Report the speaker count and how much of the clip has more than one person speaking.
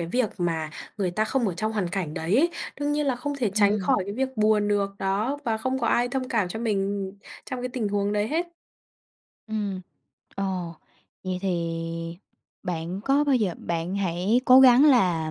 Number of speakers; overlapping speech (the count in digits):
2, about 2%